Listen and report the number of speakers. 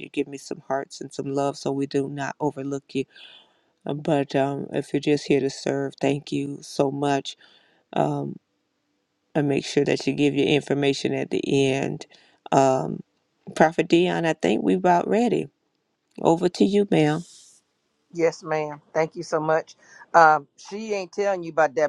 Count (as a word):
two